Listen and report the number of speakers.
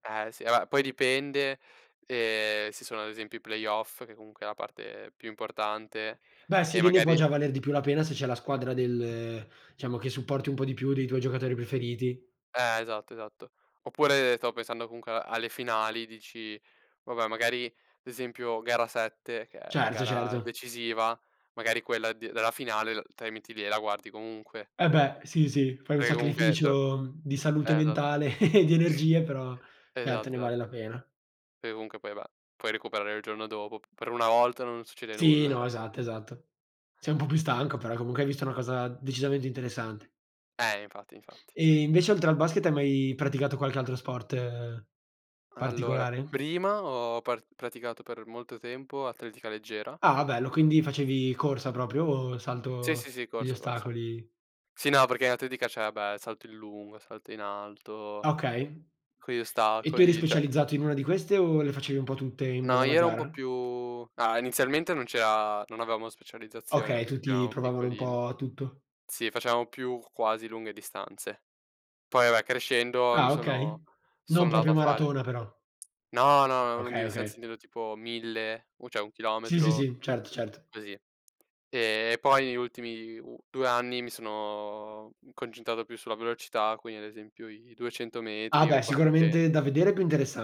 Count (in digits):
2